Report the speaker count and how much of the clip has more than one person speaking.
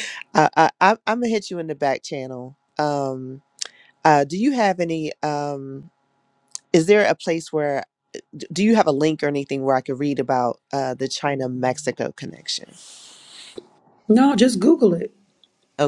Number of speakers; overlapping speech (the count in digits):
2, no overlap